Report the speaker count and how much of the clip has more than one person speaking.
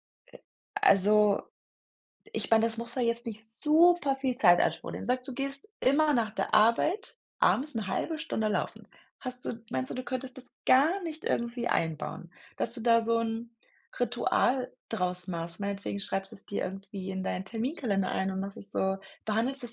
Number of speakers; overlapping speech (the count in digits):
1, no overlap